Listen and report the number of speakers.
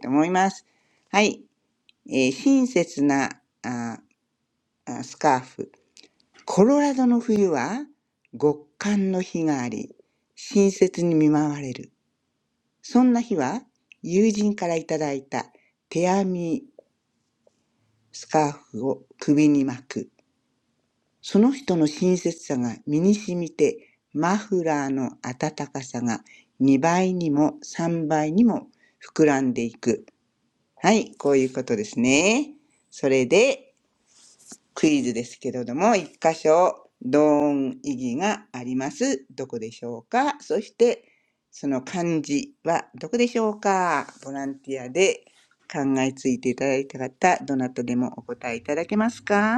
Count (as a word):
one